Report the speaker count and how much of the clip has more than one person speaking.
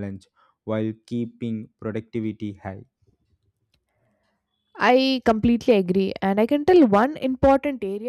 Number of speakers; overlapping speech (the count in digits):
2, no overlap